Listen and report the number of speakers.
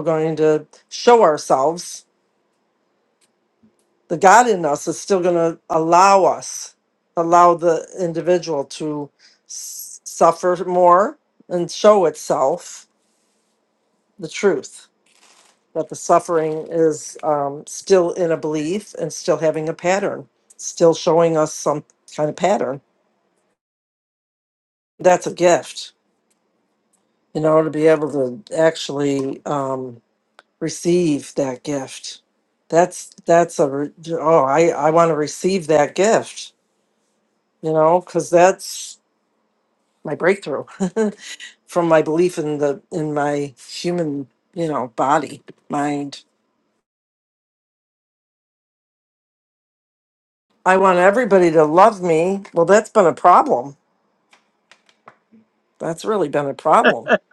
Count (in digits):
1